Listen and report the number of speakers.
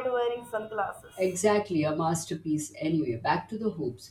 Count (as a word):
two